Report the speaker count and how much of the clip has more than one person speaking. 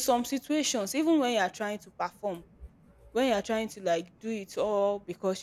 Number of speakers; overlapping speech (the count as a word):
one, no overlap